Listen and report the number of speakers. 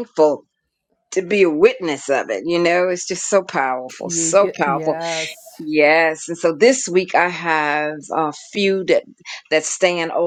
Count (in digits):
2